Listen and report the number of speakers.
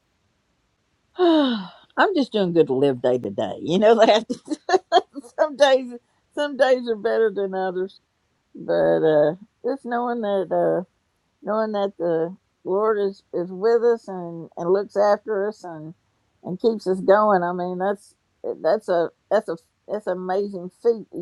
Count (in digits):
1